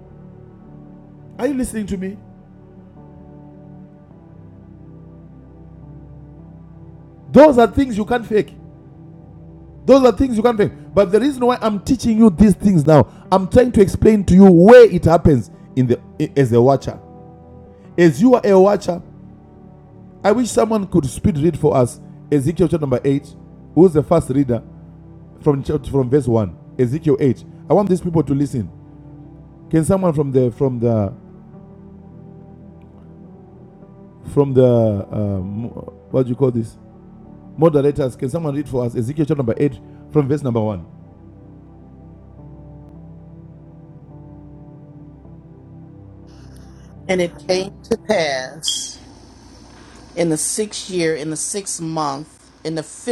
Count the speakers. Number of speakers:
two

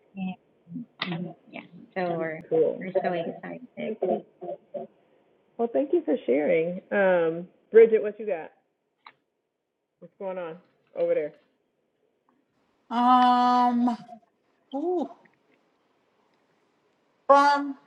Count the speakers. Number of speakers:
three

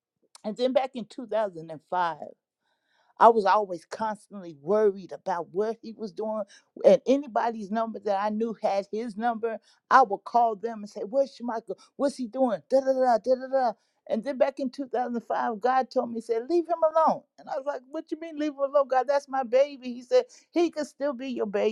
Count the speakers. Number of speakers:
one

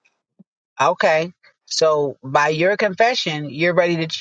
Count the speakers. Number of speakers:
one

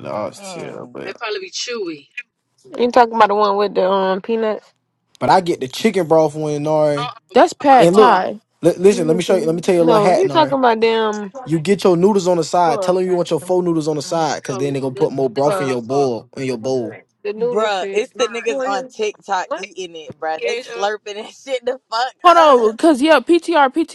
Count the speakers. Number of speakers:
five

